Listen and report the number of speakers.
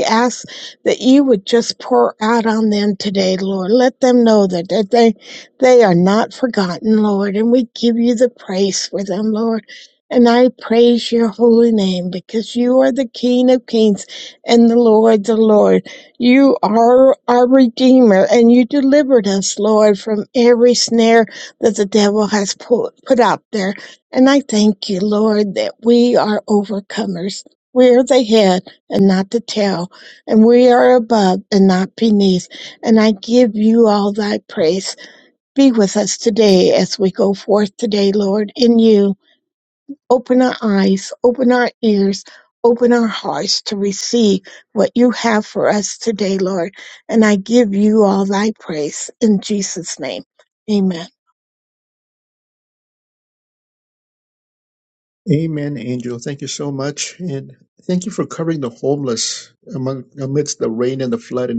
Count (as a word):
two